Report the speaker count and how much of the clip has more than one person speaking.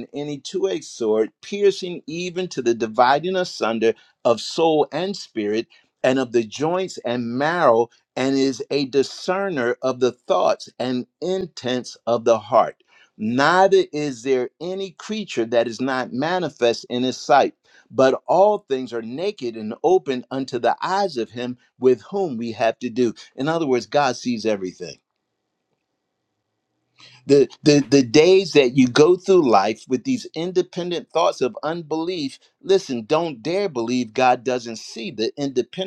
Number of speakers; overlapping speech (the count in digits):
1, no overlap